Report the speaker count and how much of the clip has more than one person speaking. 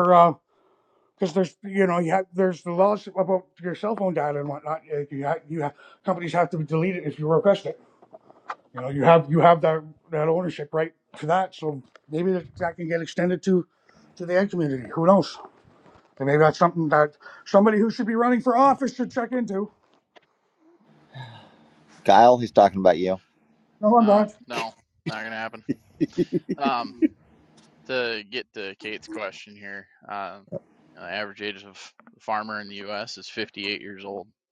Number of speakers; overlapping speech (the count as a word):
three, about 1%